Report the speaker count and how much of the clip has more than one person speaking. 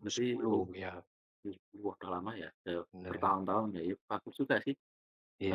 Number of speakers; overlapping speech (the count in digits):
2, about 18%